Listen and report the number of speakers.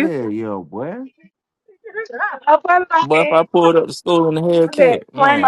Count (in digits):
3